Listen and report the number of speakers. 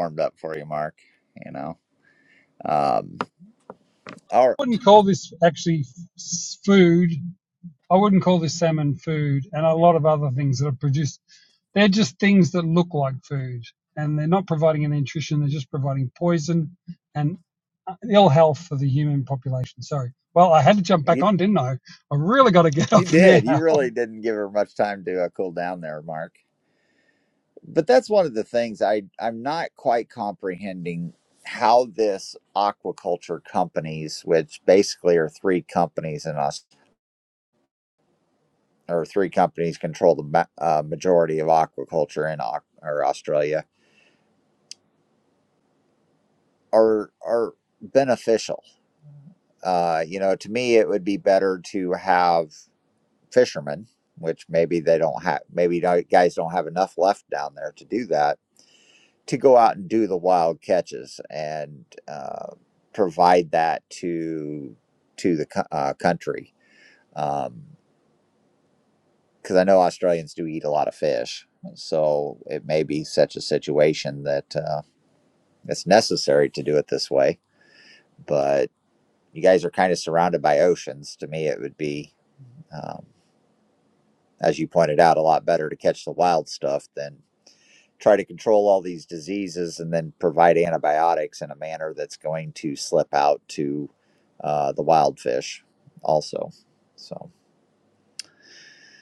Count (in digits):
2